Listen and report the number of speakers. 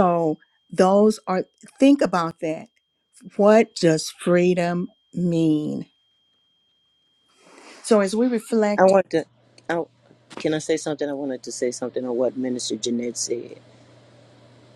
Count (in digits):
2